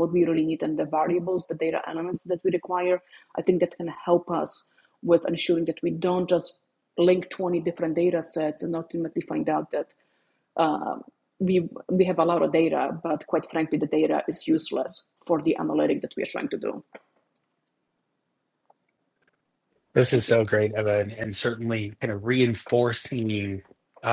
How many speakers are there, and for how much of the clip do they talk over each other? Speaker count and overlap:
2, under 1%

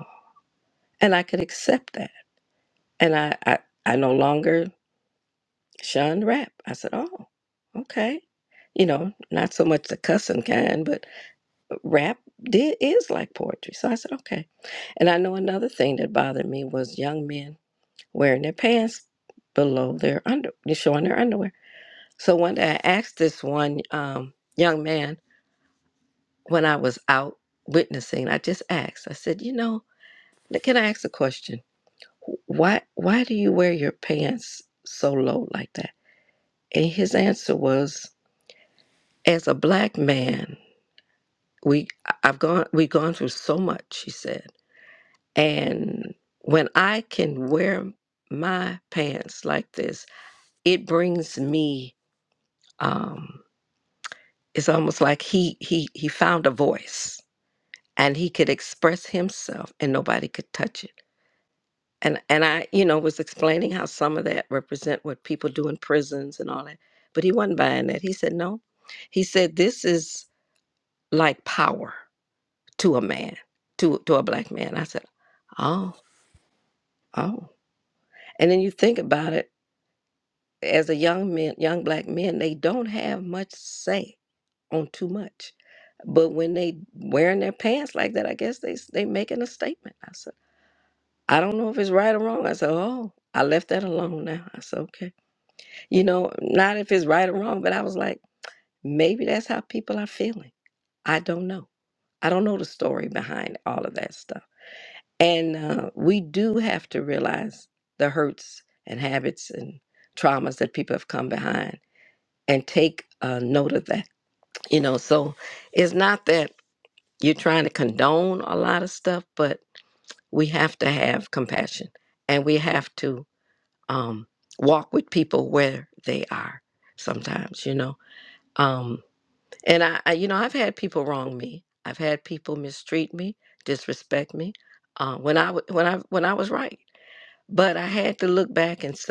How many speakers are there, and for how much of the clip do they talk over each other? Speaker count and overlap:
1, no overlap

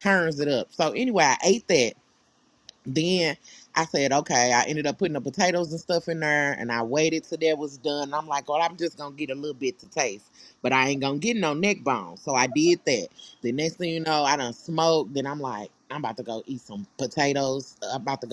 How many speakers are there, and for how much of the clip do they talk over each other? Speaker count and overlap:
1, no overlap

